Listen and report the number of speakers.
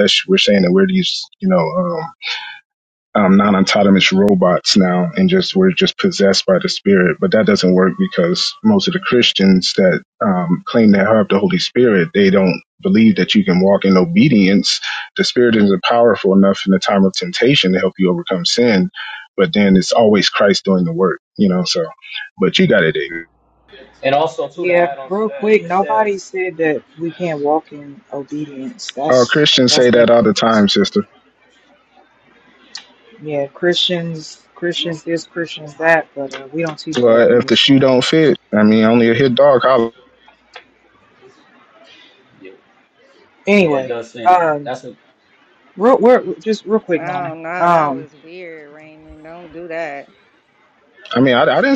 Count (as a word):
four